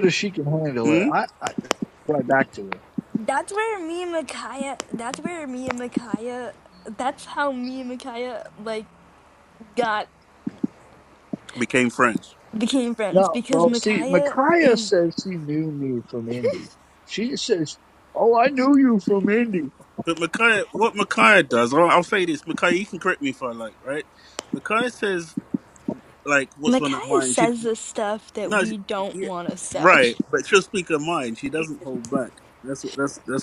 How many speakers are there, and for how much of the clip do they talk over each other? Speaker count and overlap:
three, about 11%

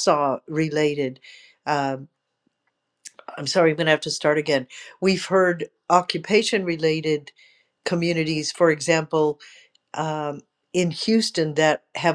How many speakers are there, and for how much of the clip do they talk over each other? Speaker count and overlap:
one, no overlap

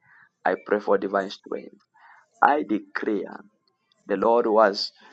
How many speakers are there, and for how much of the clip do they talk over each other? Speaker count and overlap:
one, no overlap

